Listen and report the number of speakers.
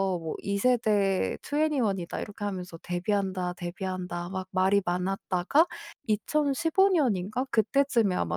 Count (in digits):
1